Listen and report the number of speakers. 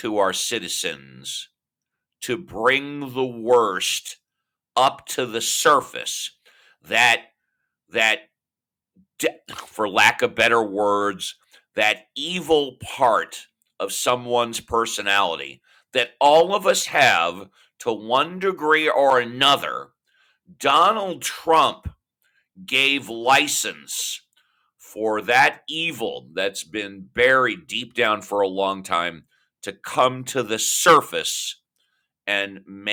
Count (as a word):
one